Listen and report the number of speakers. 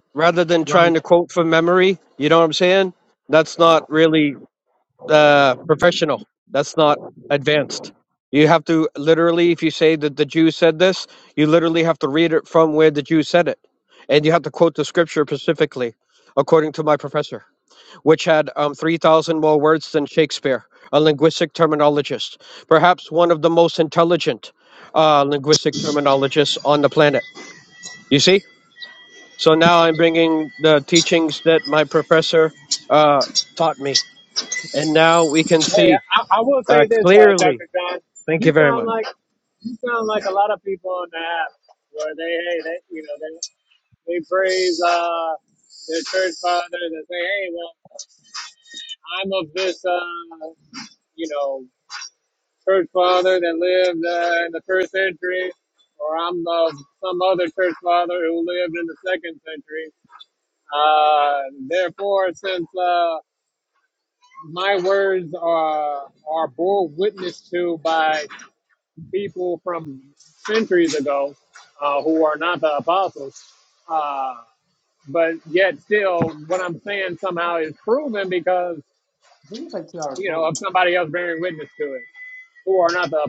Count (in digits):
3